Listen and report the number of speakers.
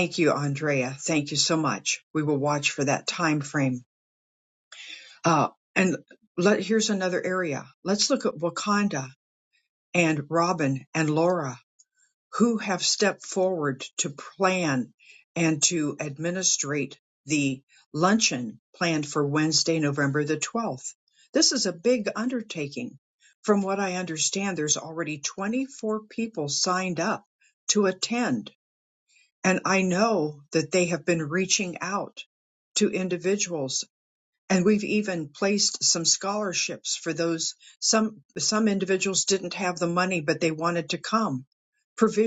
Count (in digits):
1